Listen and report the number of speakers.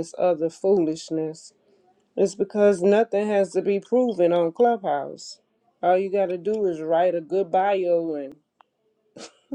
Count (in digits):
1